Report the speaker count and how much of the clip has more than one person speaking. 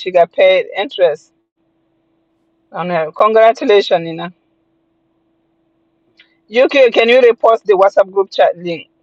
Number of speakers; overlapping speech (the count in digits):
1, no overlap